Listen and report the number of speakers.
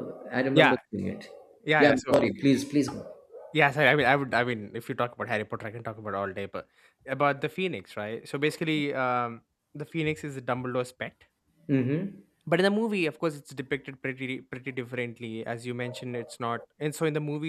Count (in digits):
2